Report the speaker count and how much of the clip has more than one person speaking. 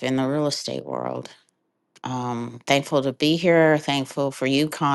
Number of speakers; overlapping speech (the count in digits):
1, no overlap